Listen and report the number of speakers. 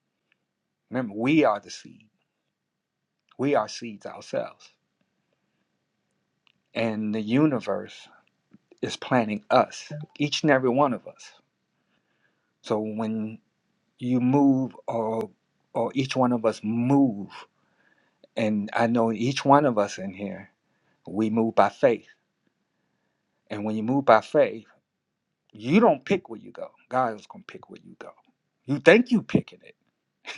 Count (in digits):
1